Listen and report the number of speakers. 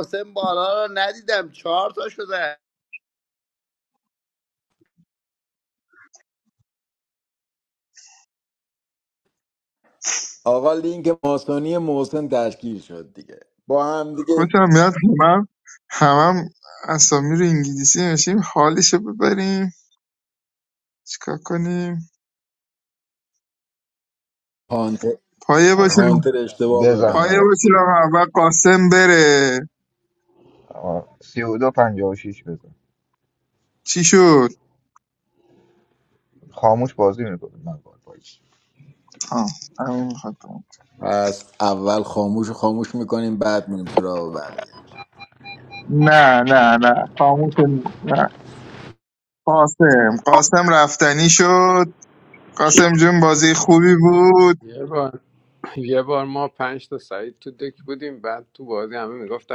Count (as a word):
five